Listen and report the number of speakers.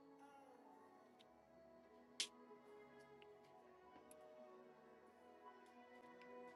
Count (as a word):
zero